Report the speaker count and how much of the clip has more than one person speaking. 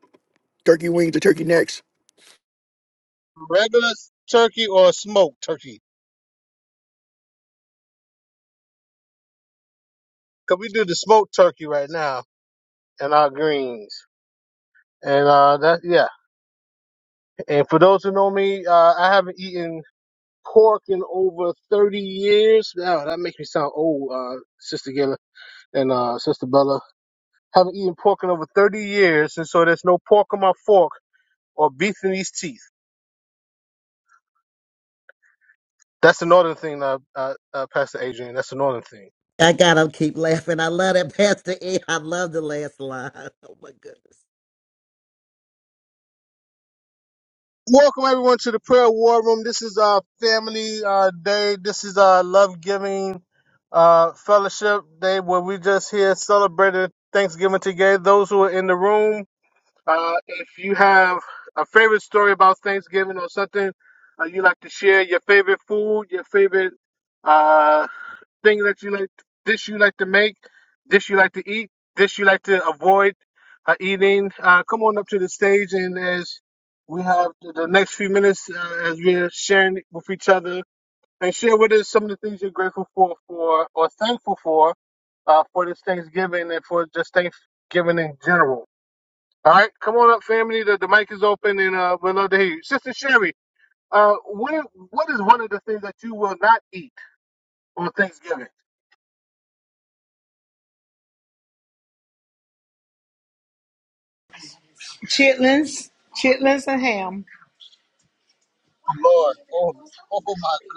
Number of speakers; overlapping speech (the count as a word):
four, no overlap